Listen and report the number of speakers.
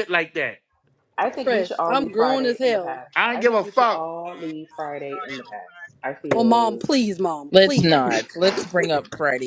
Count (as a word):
four